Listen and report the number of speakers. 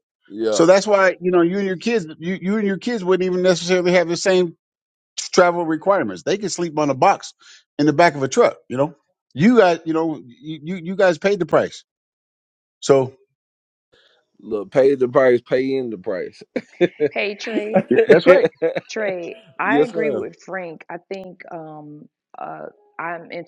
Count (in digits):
3